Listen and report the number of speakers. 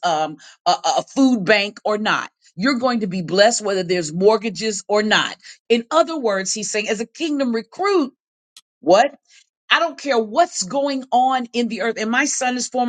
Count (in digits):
1